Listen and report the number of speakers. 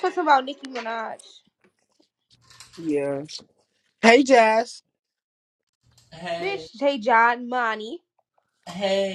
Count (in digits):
3